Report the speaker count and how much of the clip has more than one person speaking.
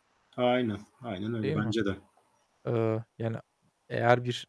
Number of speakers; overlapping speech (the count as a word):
two, about 6%